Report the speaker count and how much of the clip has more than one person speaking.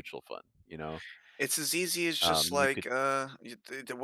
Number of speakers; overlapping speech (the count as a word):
two, about 15%